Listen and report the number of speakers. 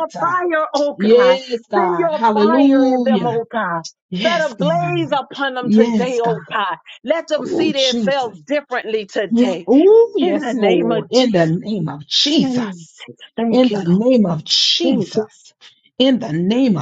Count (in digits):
2